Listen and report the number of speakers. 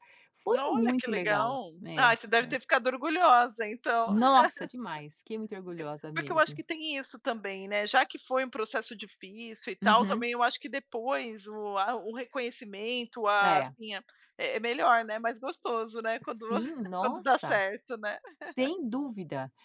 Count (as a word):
two